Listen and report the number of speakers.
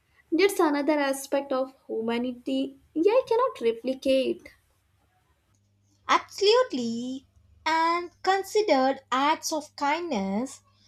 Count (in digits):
2